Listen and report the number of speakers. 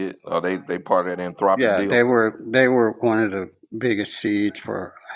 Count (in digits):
2